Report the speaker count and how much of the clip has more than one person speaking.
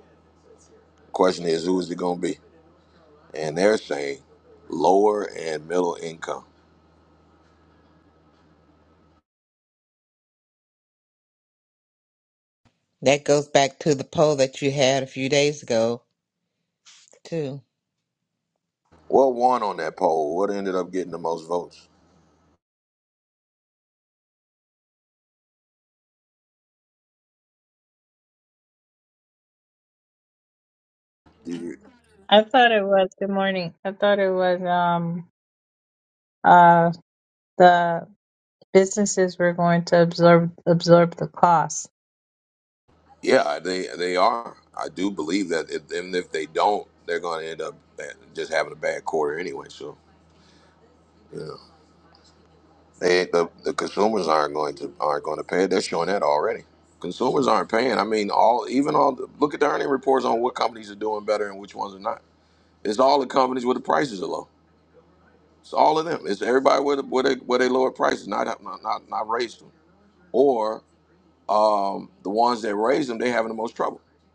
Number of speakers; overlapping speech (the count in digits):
3, no overlap